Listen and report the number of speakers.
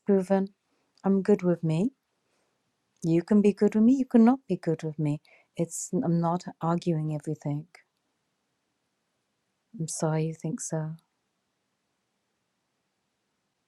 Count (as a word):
one